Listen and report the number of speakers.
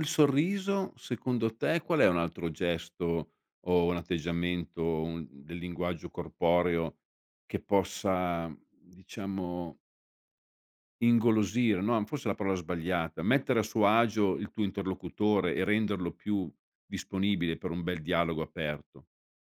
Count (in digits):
1